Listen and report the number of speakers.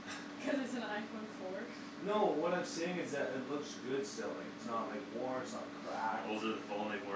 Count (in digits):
3